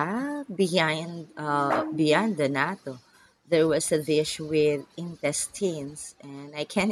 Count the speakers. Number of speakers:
one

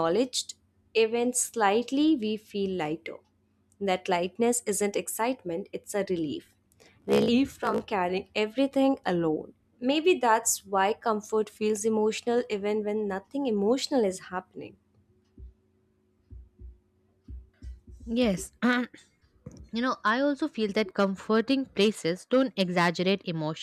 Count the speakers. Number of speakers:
two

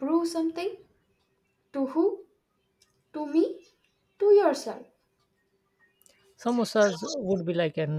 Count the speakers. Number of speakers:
two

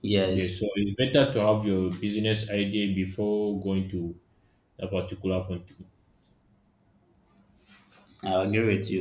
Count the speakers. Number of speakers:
two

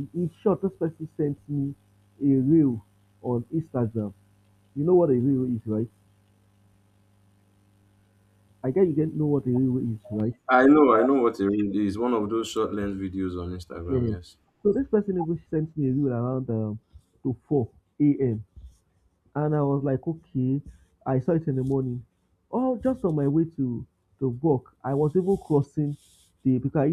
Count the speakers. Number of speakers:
two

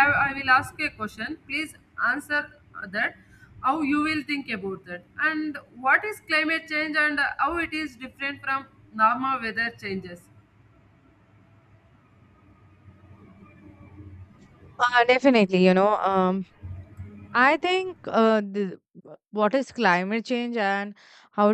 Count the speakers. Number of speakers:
two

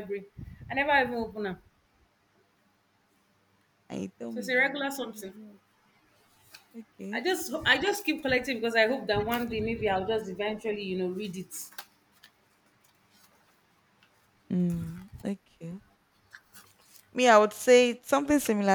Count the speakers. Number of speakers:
two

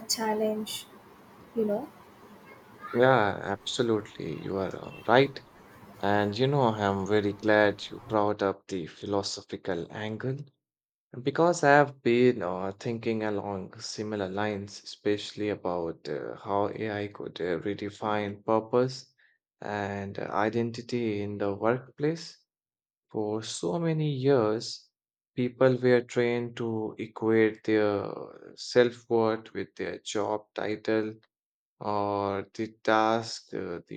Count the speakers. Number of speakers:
two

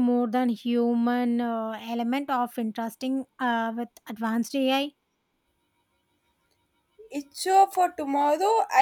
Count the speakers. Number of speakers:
two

